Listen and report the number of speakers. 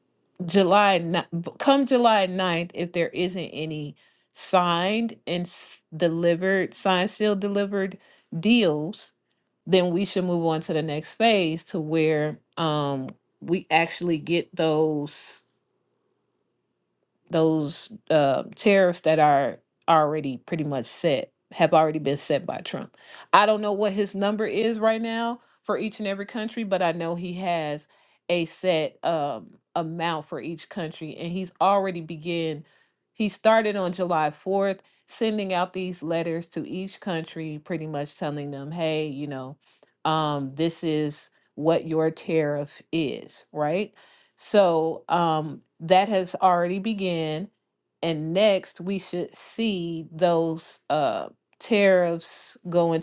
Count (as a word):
one